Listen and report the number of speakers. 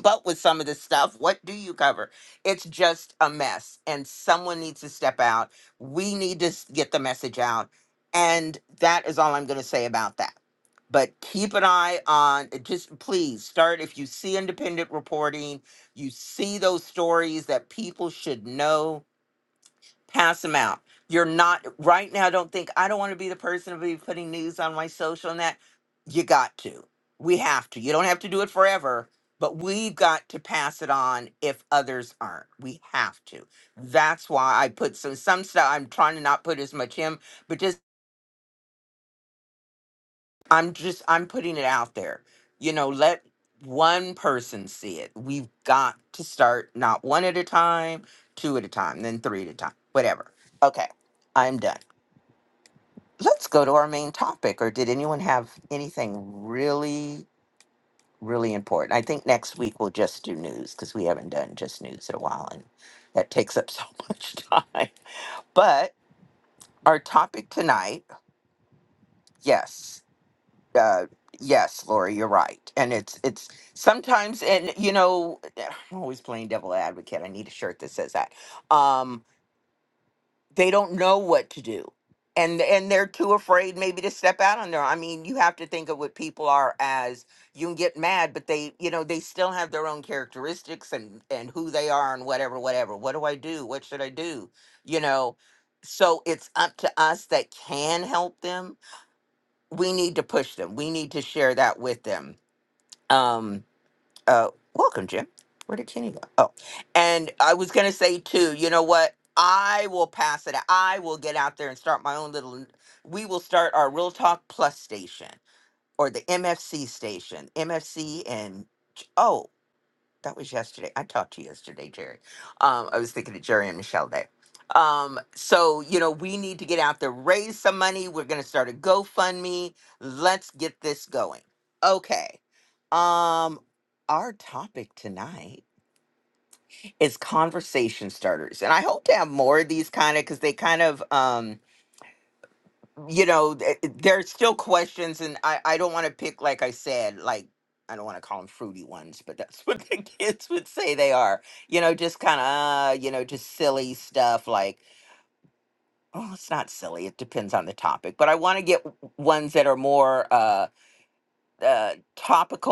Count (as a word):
one